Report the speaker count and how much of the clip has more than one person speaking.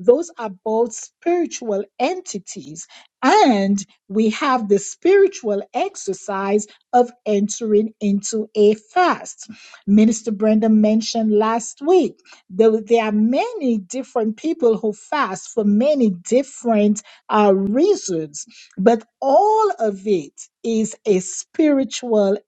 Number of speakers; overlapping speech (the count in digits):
1, no overlap